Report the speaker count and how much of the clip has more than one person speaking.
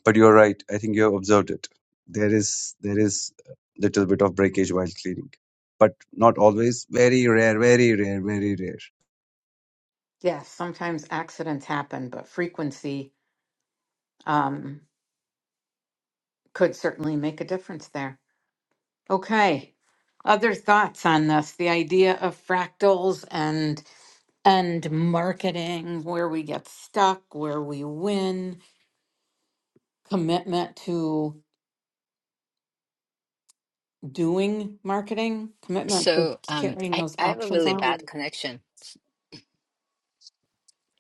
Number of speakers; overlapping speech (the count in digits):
3, about 5%